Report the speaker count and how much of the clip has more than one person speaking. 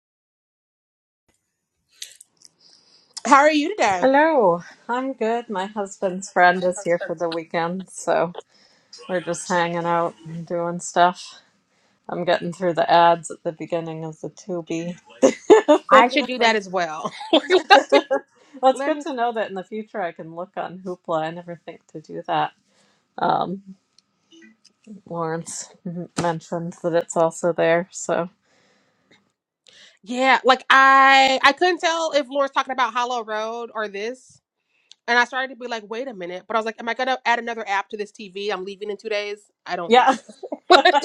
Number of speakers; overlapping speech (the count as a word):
two, about 3%